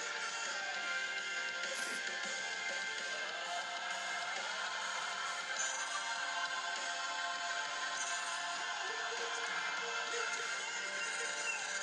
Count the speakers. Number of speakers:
0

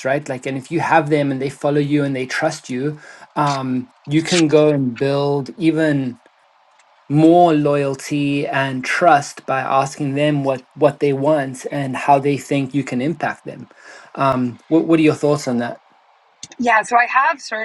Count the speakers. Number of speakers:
2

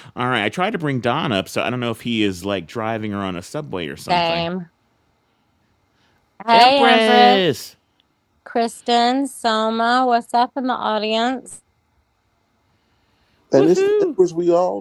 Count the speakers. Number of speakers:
3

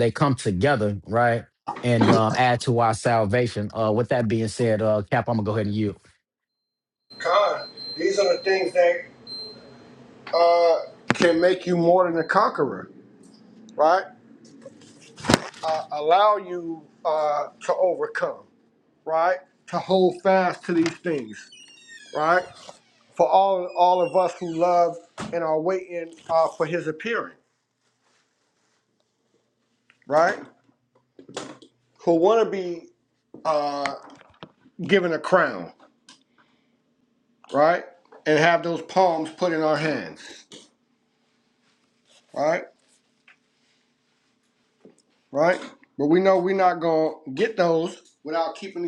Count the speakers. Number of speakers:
2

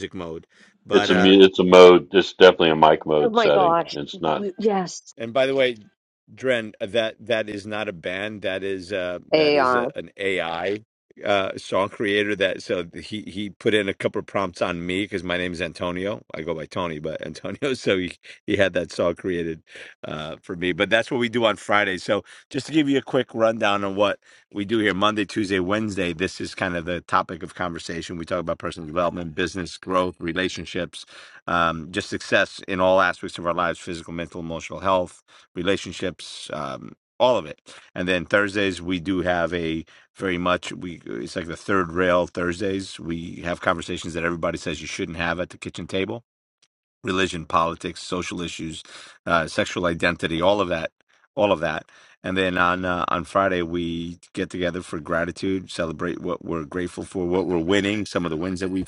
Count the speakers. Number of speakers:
3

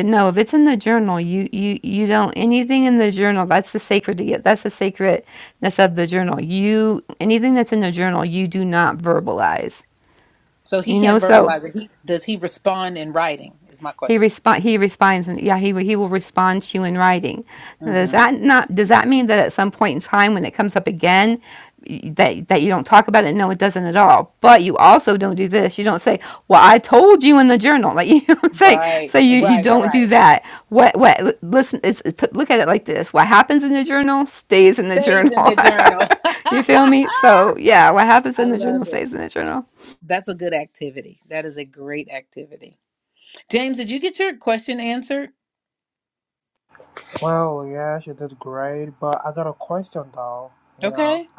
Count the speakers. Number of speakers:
3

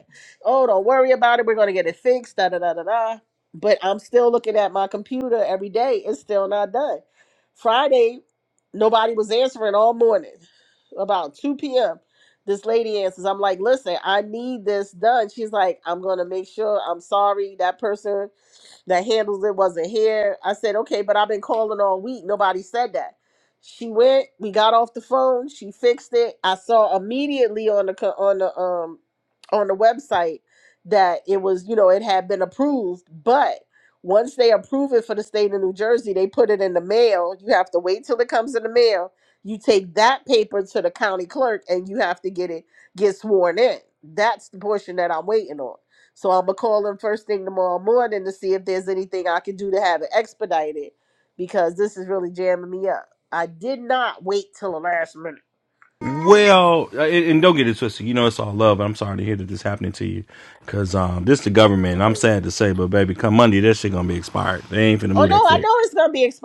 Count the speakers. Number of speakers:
2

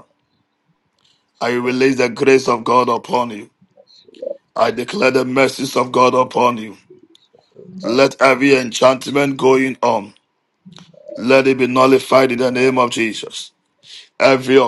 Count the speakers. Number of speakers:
2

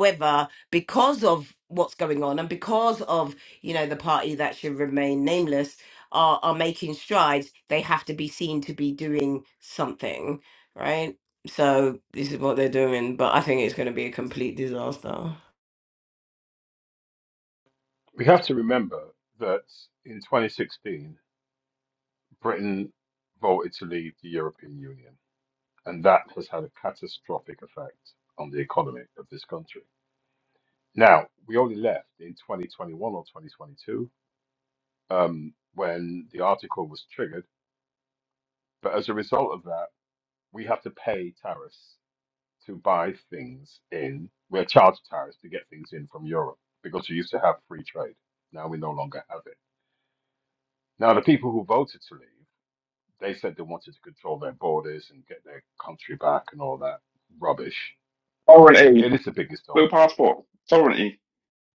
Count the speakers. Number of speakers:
3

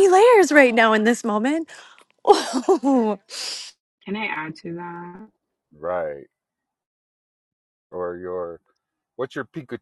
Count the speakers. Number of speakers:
3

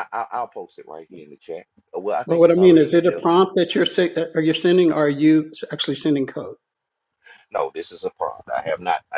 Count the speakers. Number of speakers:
2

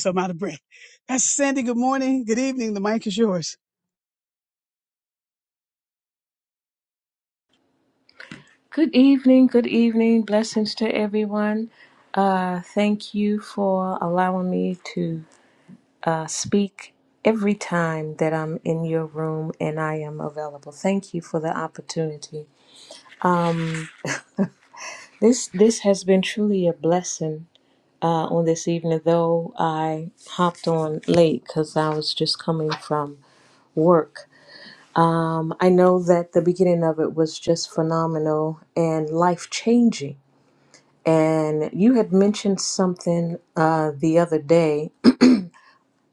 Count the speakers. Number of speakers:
2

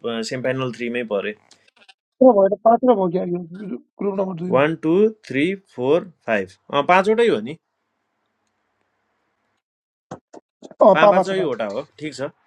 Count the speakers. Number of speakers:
2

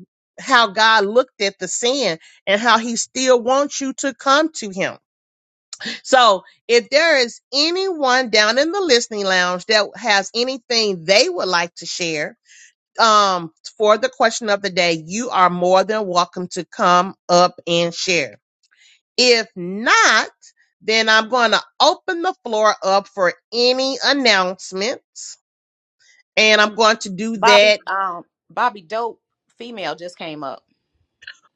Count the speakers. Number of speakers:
2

